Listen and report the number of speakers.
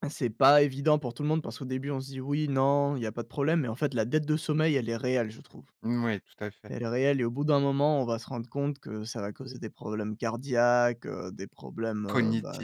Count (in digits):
2